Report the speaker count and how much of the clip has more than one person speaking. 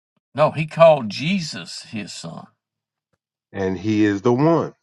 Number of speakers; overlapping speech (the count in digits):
2, no overlap